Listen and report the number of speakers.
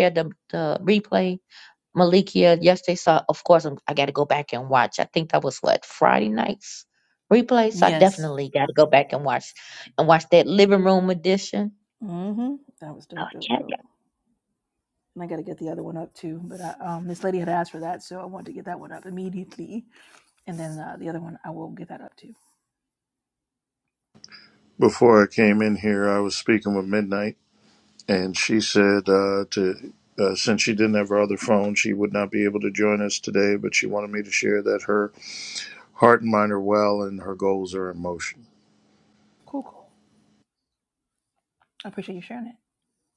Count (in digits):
3